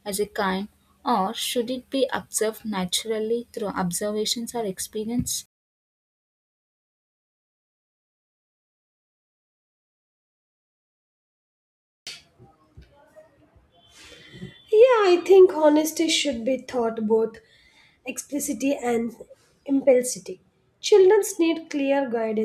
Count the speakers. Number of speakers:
2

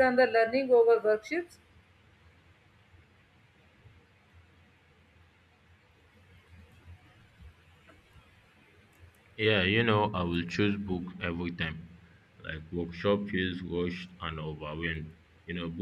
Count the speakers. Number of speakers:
2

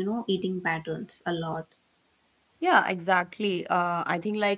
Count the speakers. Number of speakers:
2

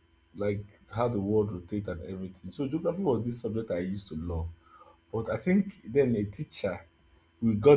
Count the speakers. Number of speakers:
1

